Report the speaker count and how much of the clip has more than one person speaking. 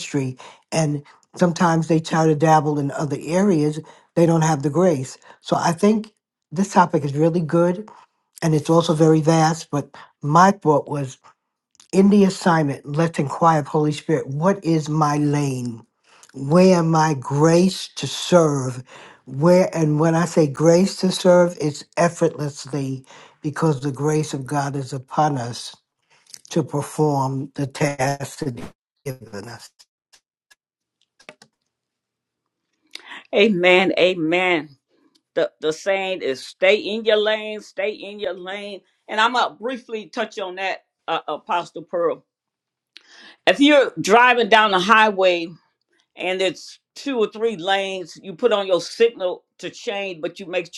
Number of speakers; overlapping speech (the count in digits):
2, no overlap